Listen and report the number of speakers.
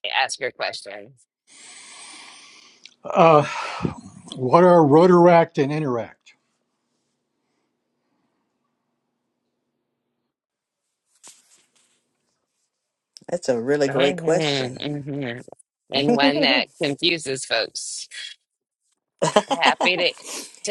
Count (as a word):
three